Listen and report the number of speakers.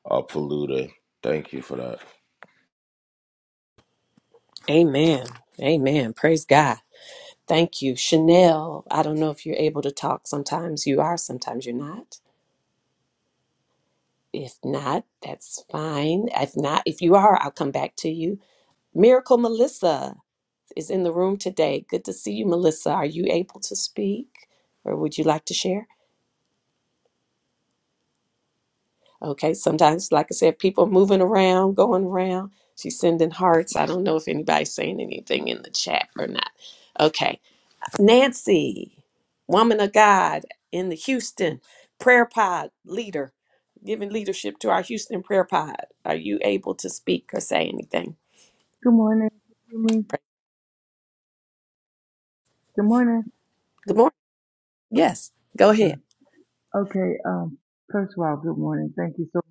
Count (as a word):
three